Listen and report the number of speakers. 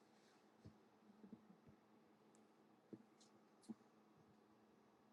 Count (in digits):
0